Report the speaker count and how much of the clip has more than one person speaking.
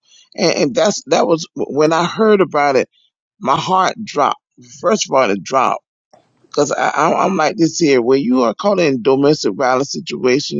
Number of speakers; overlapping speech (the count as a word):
one, no overlap